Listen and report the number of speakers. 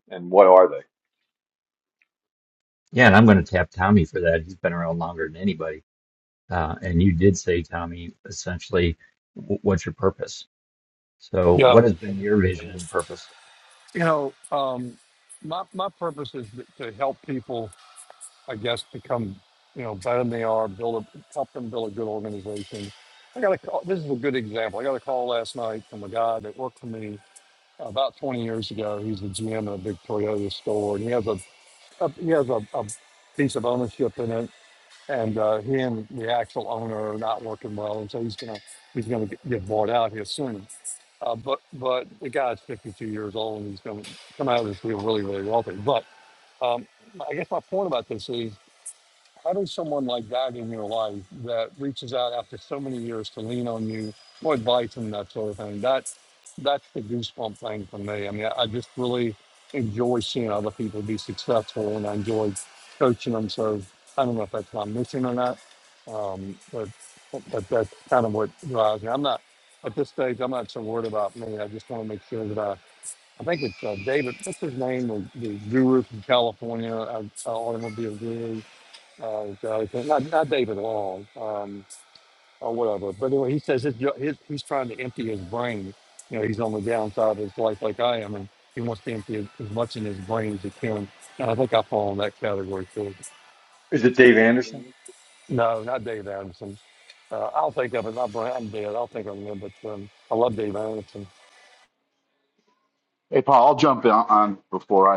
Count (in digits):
4